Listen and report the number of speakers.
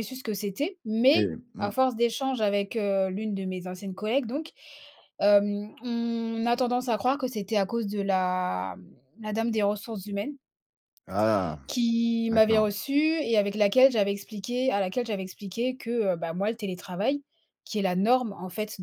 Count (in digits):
2